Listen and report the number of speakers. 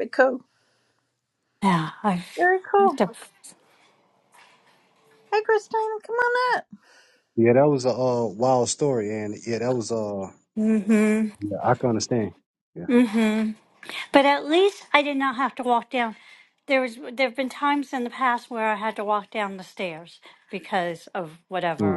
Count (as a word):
three